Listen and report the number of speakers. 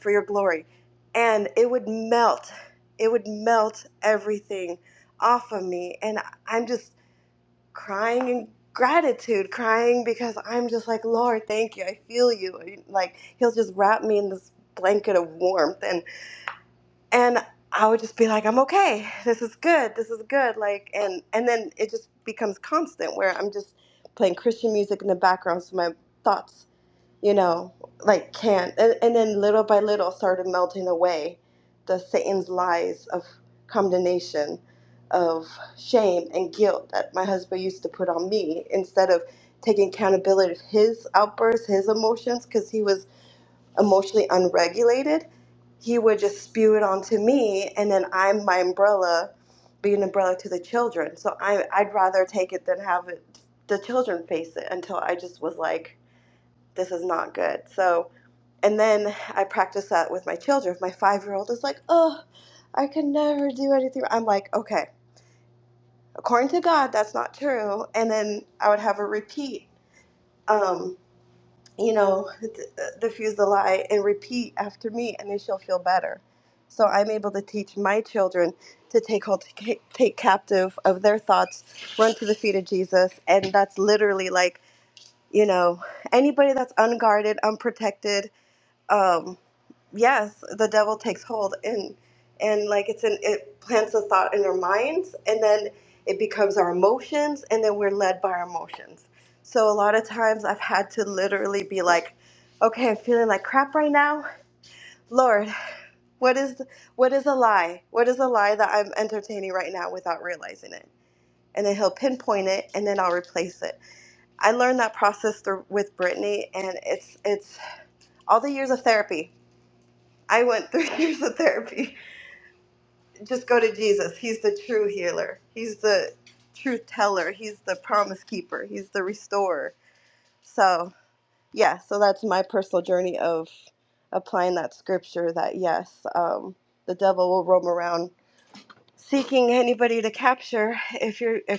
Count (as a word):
one